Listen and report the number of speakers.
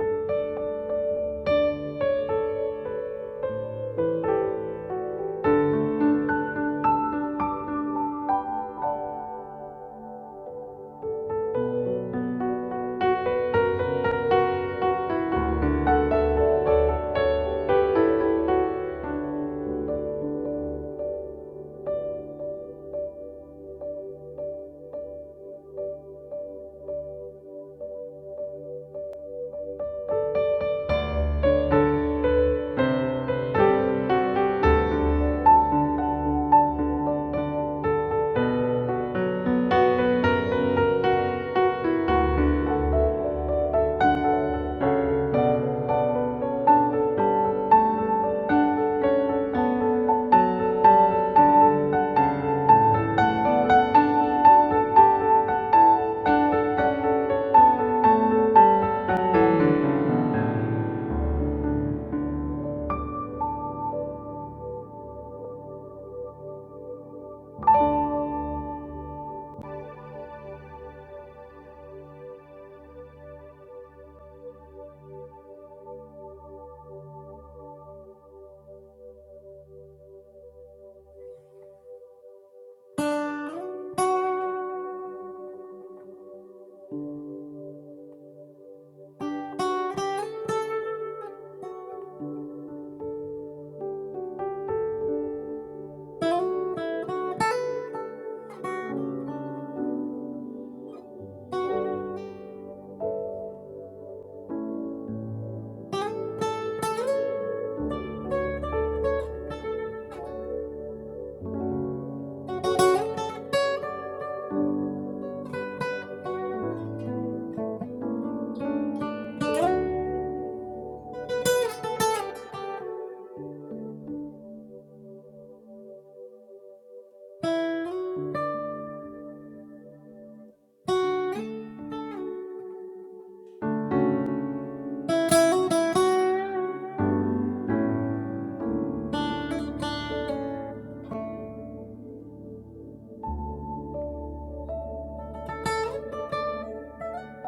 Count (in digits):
0